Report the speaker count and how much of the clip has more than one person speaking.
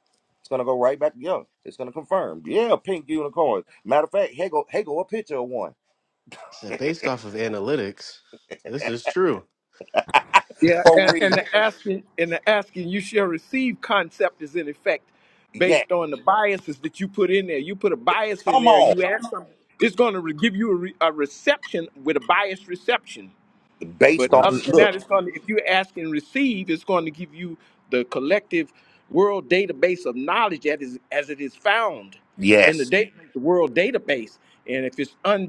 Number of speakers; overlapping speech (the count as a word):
three, about 6%